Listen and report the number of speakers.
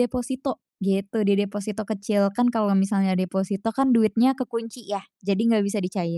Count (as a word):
one